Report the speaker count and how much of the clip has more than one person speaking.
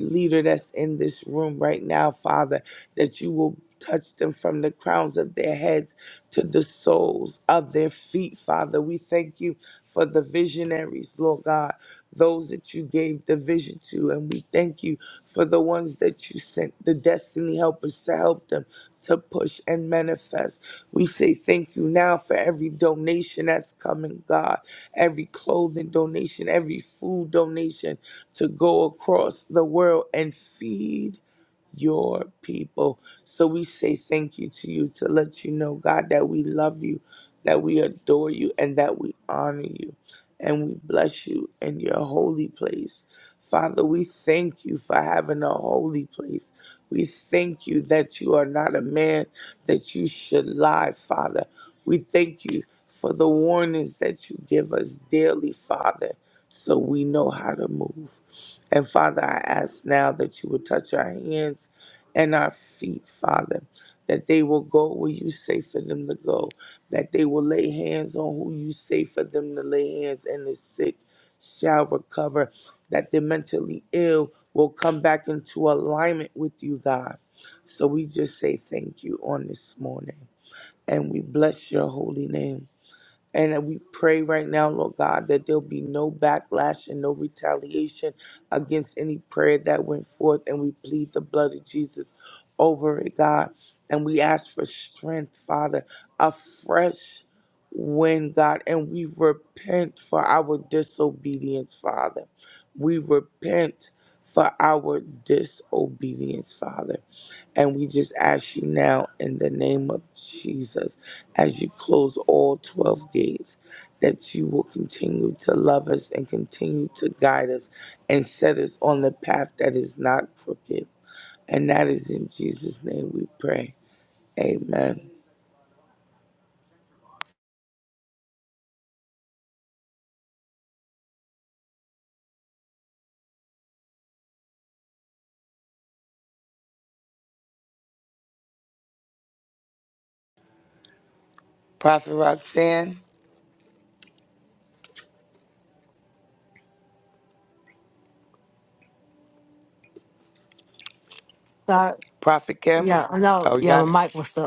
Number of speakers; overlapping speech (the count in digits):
2, under 1%